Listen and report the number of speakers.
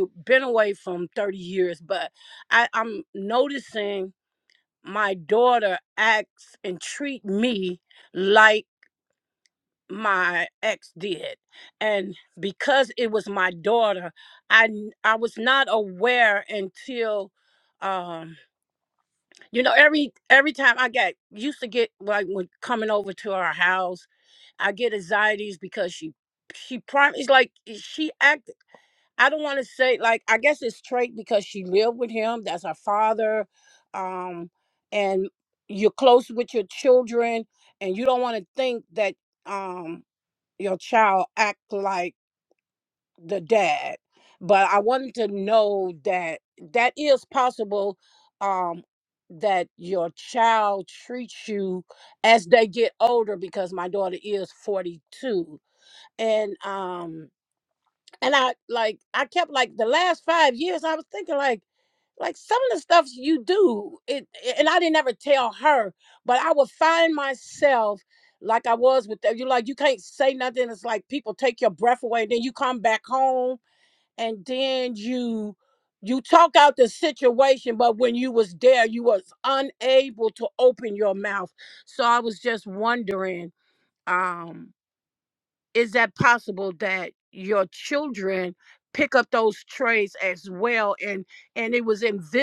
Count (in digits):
1